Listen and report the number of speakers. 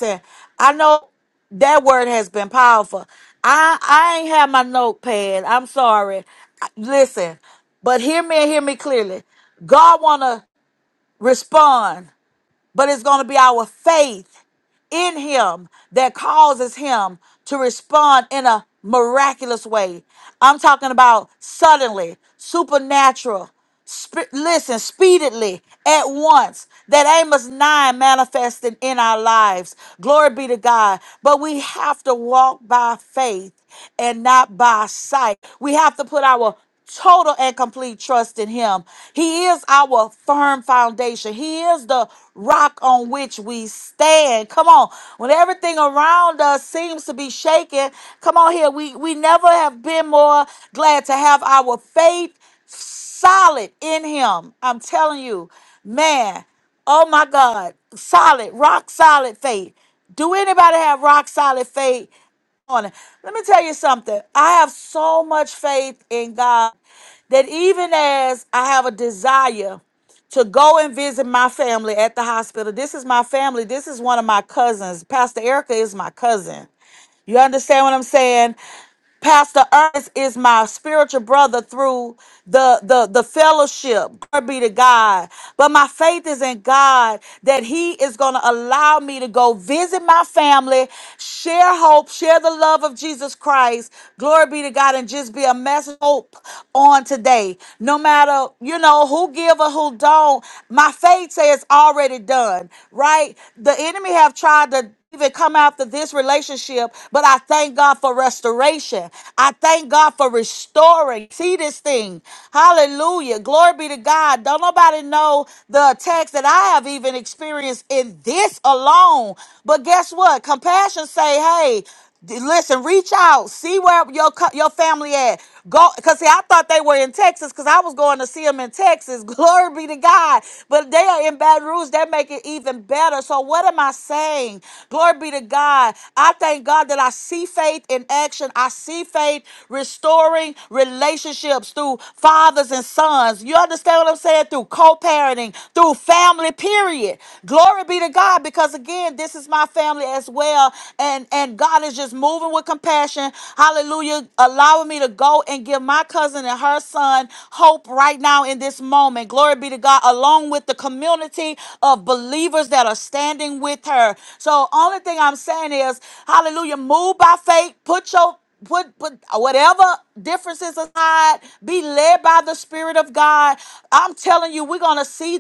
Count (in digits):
1